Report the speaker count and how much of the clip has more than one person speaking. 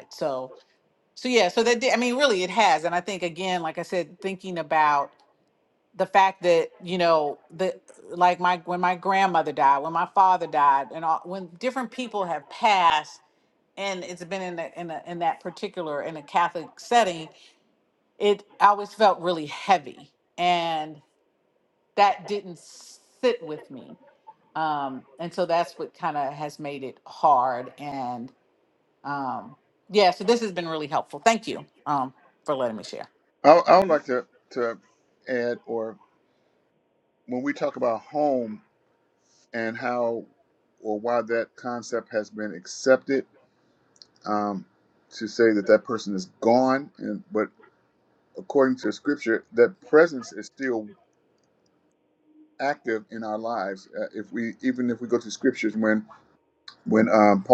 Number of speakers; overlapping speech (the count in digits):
2, no overlap